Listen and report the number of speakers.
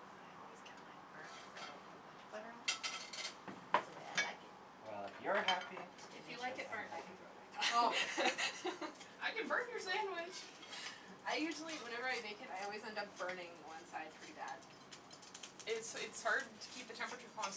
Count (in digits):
4